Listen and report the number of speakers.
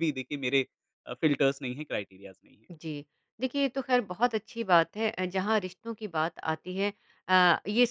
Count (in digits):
2